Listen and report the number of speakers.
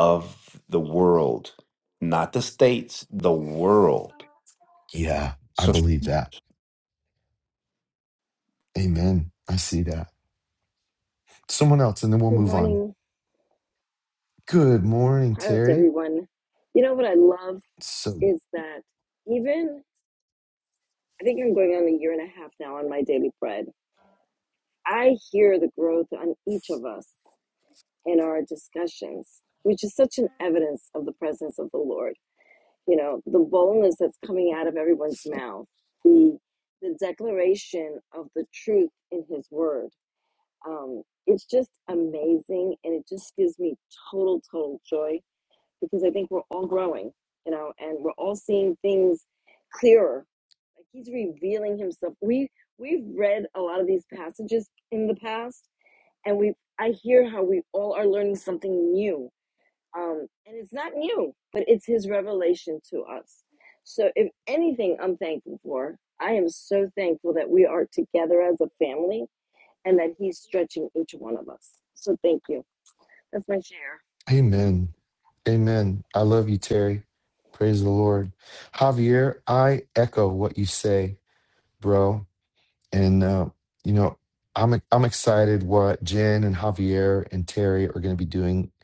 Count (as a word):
three